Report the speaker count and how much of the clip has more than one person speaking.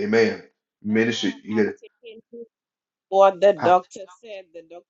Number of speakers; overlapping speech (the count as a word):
two, about 21%